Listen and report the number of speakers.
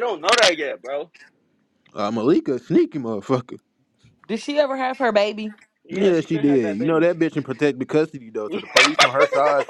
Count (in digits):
3